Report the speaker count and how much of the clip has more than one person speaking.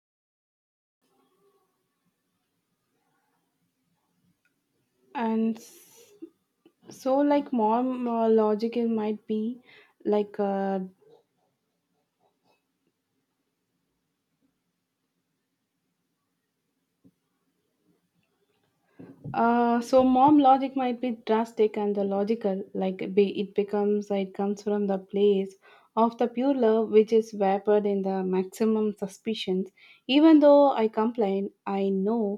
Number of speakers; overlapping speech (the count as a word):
one, no overlap